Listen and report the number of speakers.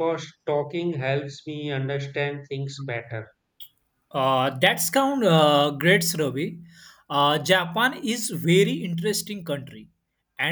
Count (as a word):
two